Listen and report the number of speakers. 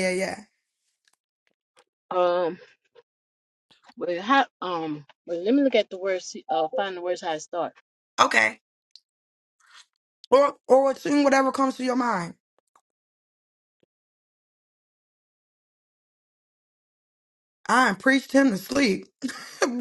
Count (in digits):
2